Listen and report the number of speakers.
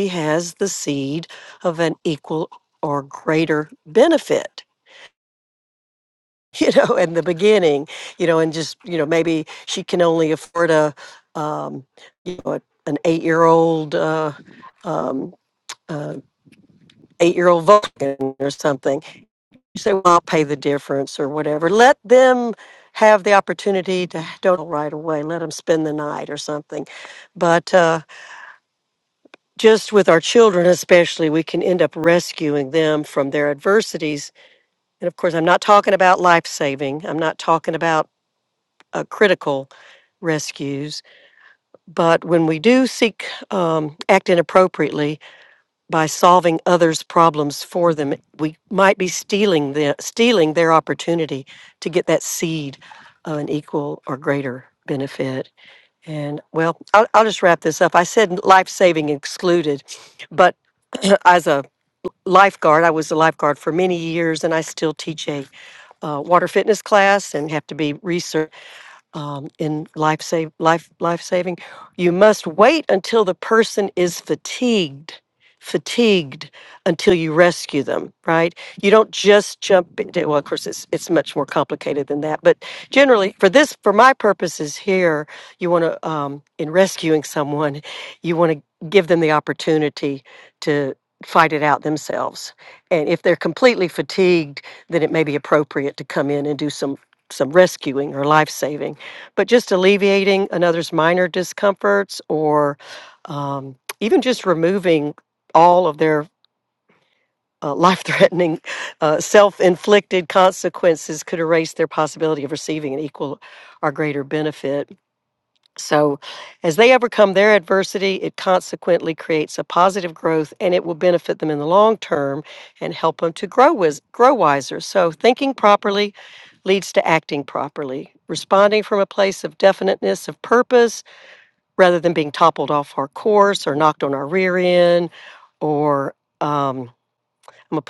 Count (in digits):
1